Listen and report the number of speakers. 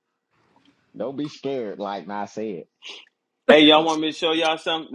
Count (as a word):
two